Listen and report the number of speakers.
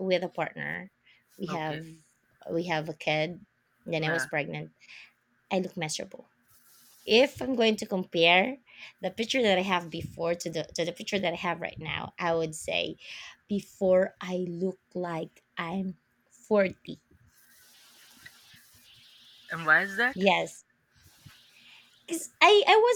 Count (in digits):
2